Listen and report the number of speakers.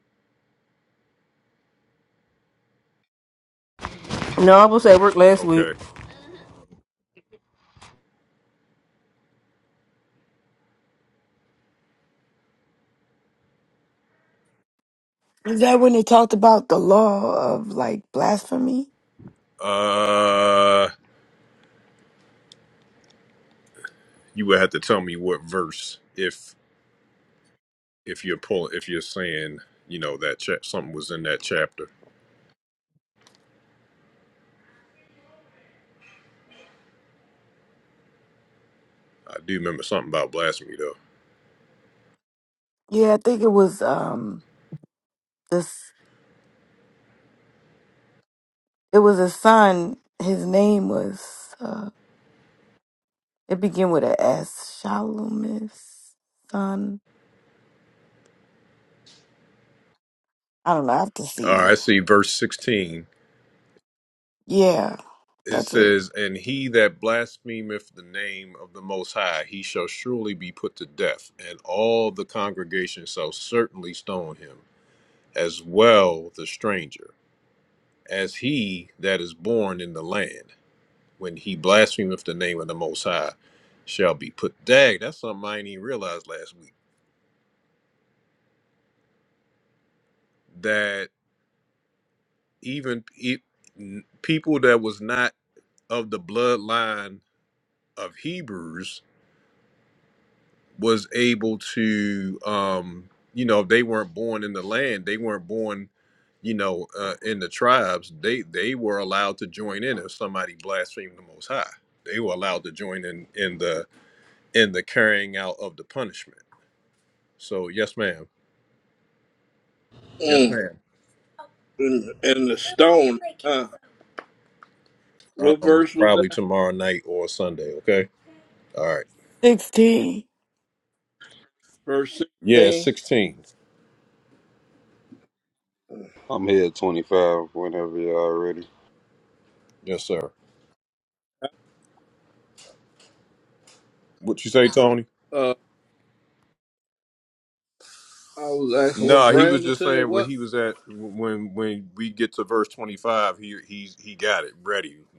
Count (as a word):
five